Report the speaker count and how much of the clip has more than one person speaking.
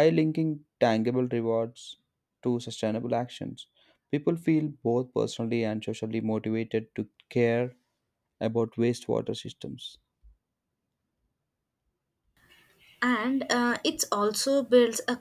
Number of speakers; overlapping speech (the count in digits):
2, no overlap